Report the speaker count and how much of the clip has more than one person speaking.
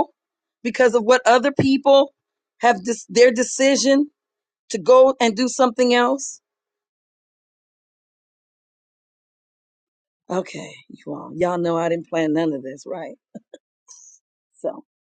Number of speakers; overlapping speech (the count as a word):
one, no overlap